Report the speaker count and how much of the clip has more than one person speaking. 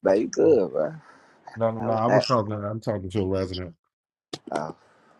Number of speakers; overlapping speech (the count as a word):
two, about 10%